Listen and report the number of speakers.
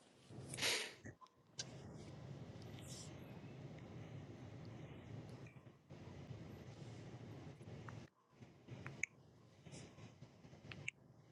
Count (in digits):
0